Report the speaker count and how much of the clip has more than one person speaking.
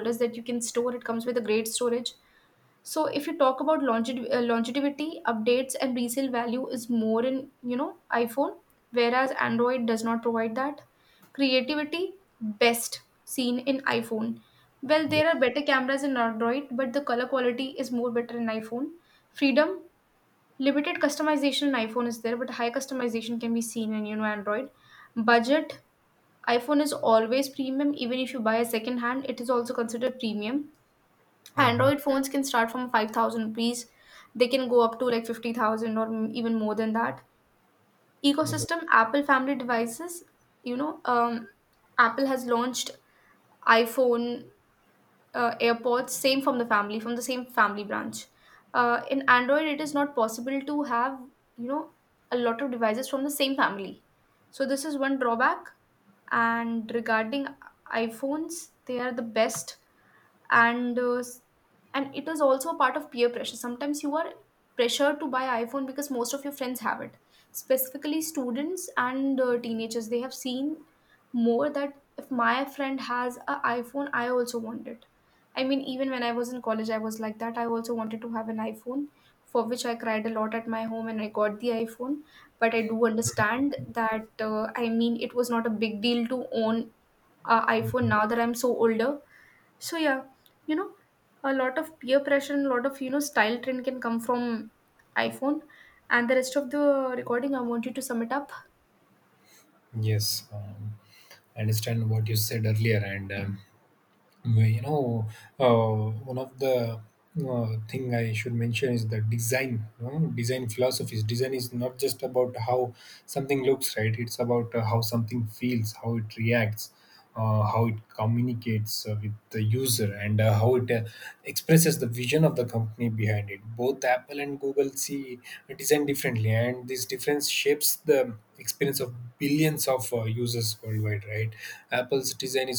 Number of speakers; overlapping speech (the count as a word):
two, about 1%